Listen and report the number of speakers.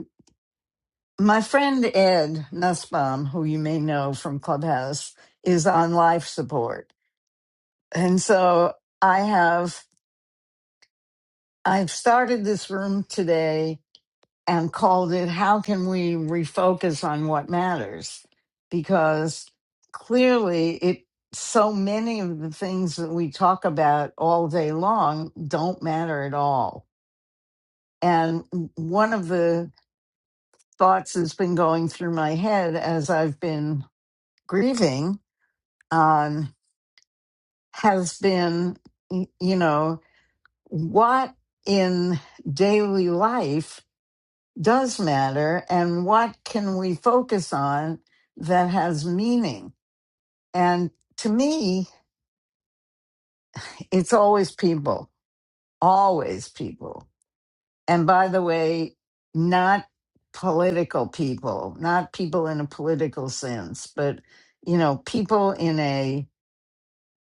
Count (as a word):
one